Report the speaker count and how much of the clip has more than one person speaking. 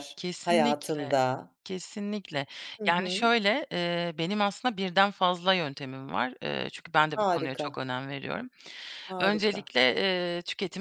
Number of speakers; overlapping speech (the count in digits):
2, about 20%